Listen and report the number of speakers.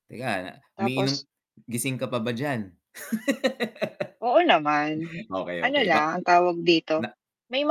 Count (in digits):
2